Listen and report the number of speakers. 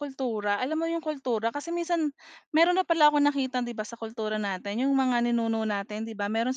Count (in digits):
1